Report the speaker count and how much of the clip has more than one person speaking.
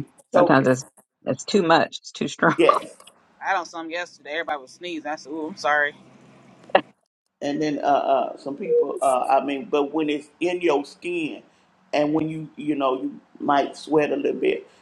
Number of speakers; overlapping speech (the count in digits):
3, about 3%